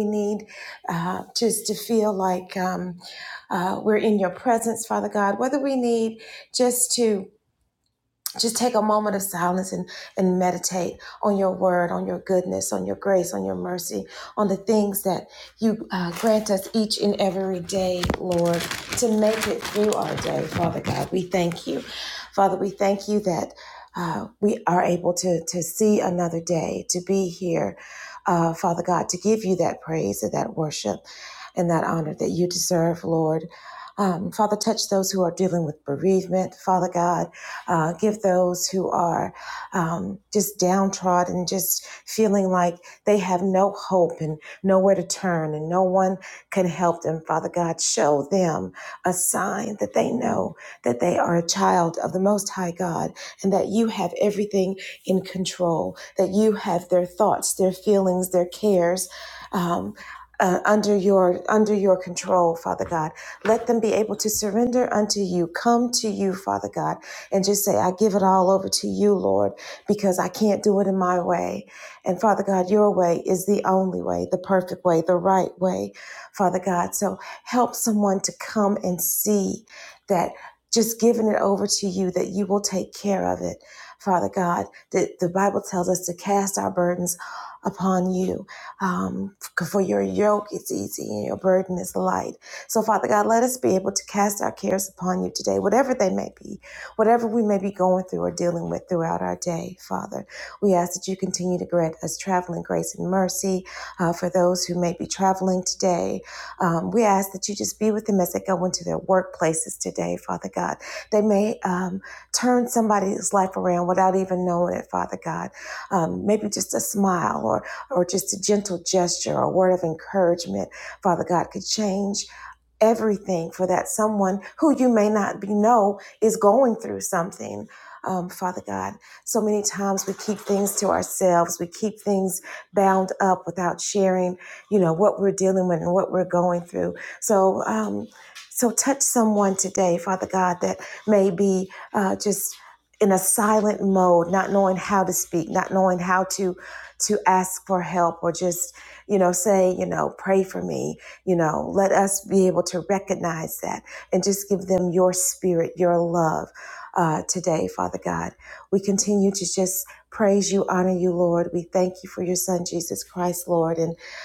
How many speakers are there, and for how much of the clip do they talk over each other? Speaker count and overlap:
1, no overlap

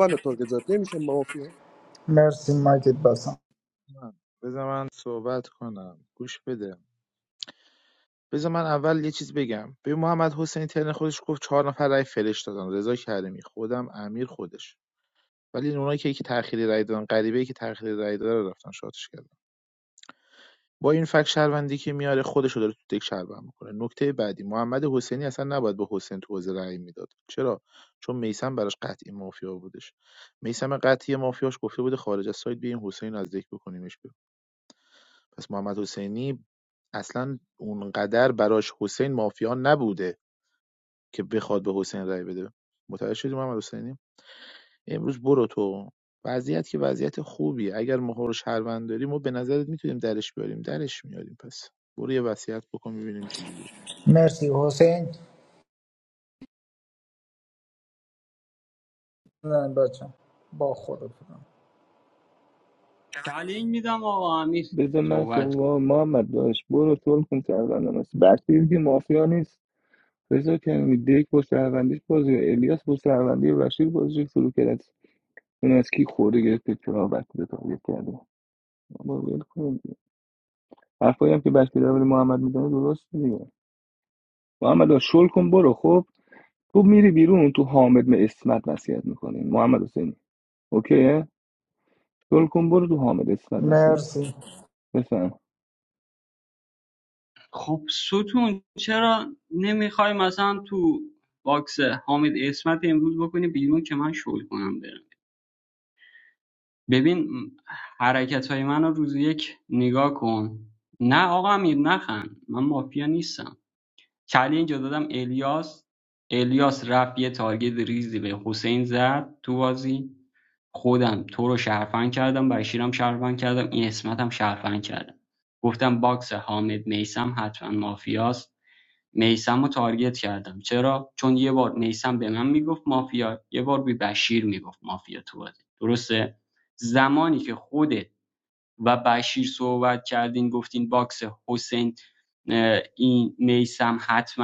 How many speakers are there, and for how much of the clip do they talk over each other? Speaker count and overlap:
5, about 1%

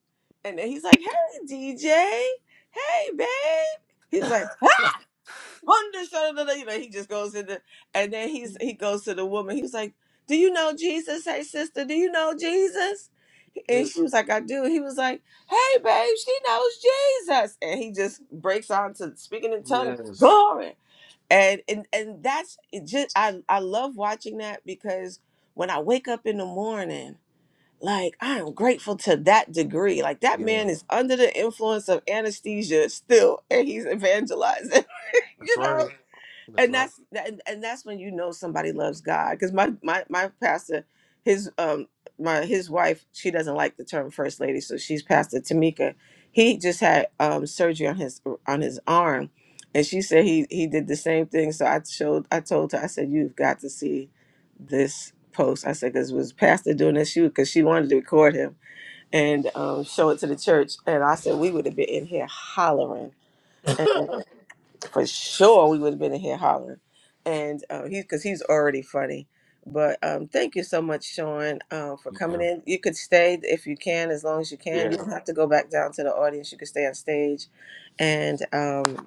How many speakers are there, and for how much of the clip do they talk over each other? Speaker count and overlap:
2, about 2%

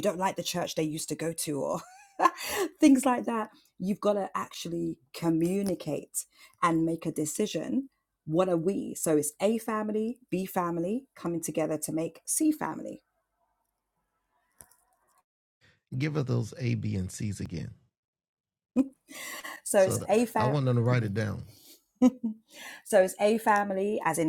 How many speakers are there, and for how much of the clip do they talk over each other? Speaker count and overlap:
2, about 3%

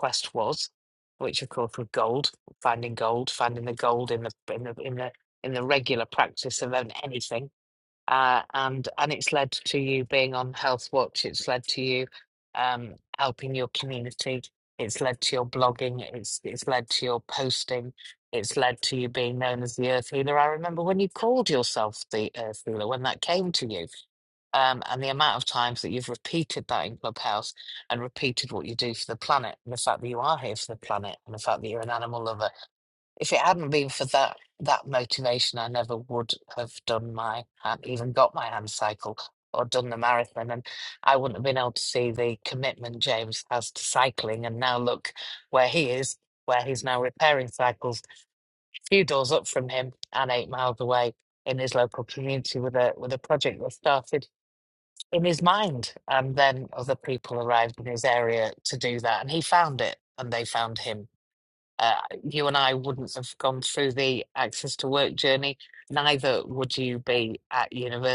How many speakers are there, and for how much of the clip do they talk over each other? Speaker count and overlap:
1, no overlap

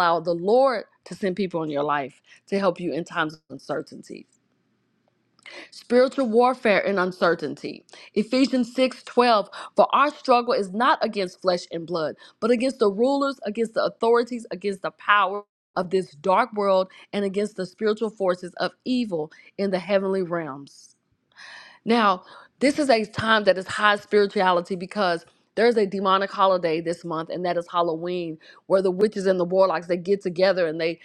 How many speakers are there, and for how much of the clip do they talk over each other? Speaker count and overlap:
1, no overlap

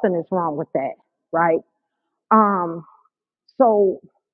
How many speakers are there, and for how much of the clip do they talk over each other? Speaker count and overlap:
1, no overlap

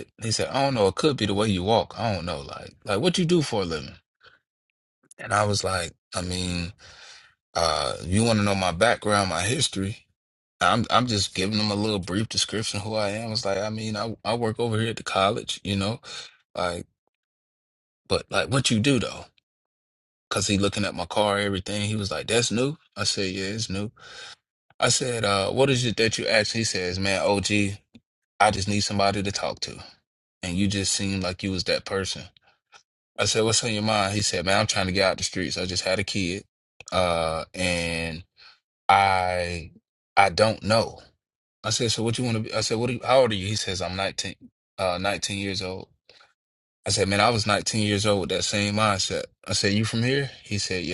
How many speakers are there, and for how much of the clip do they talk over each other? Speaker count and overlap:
1, no overlap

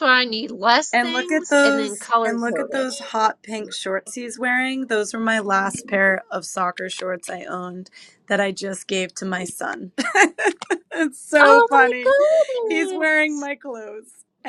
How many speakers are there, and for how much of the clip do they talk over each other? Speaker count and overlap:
2, about 22%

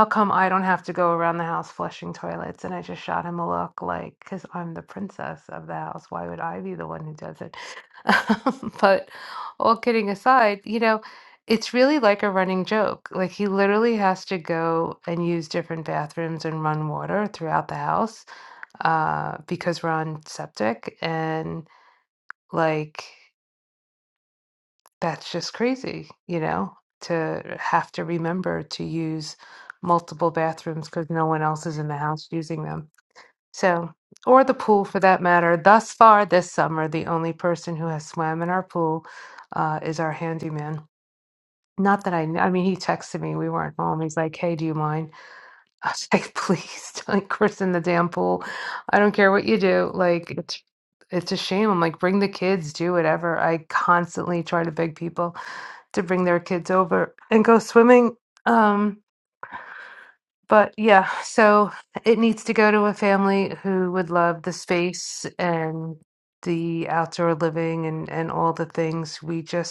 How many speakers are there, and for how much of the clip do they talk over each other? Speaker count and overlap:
1, no overlap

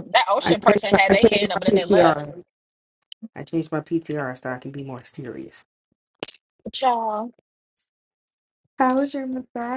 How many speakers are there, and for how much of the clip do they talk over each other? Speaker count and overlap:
2, about 18%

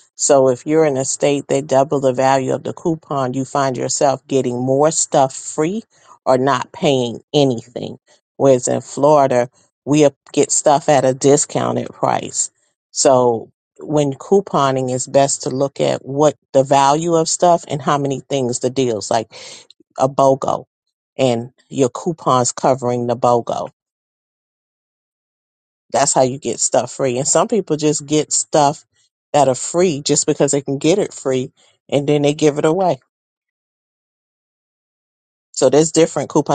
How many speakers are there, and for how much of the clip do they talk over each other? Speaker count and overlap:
1, no overlap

